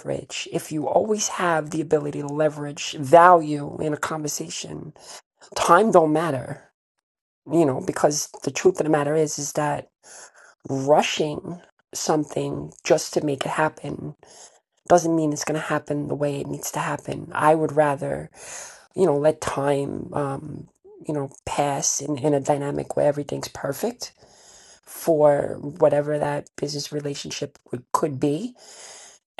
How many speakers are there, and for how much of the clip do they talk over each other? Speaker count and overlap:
1, no overlap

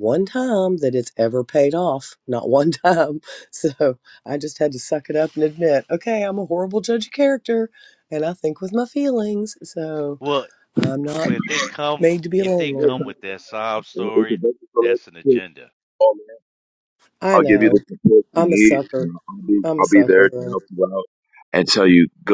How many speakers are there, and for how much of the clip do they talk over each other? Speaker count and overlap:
3, about 20%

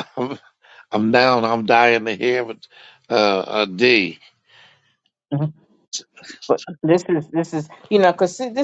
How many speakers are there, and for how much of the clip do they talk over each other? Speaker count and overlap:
2, no overlap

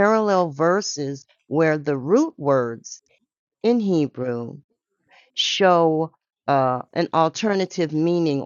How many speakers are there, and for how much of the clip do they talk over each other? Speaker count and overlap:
1, no overlap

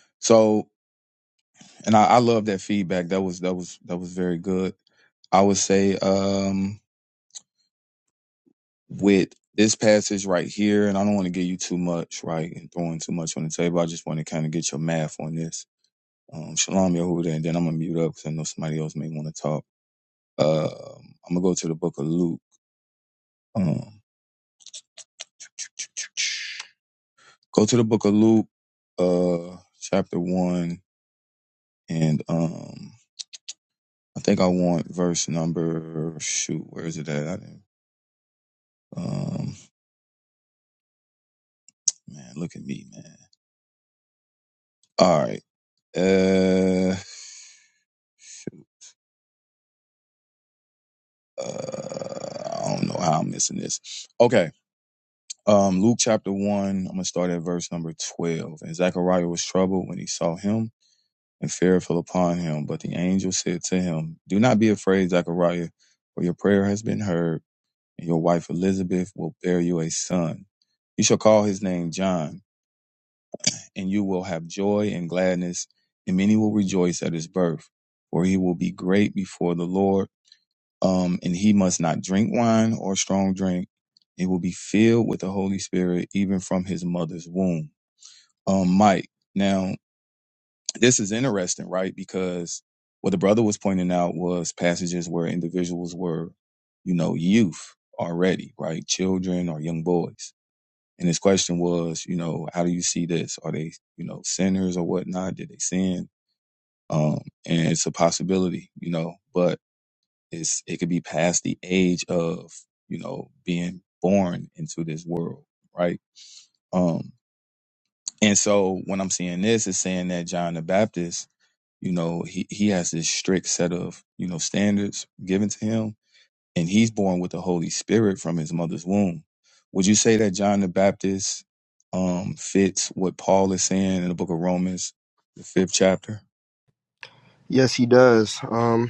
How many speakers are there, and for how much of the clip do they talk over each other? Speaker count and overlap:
2, no overlap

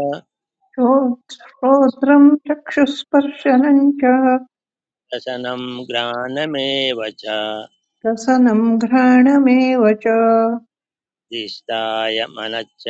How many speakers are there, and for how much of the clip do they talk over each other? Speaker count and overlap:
2, no overlap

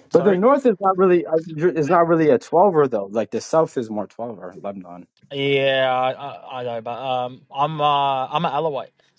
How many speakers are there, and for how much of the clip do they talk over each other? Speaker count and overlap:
2, about 3%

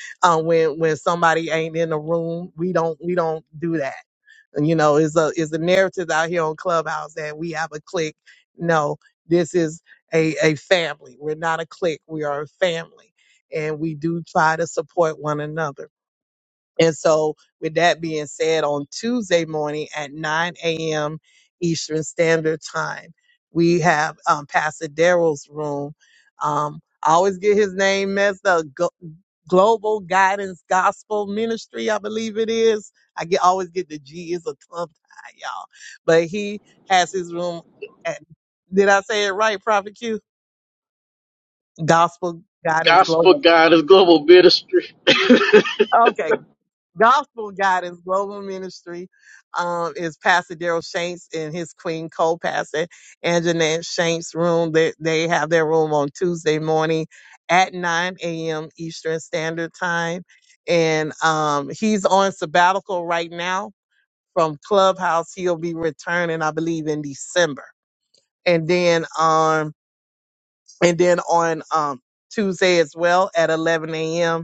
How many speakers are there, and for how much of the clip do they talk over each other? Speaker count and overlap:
2, about 1%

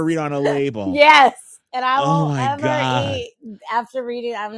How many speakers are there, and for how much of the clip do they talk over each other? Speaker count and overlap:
2, about 30%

